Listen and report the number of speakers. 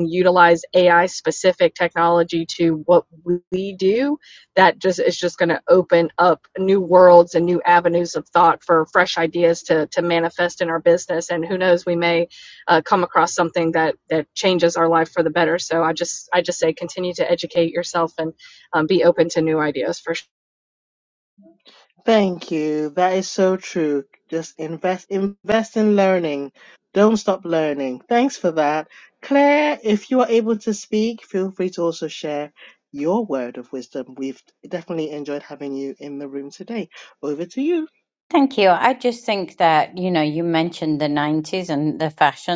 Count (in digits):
3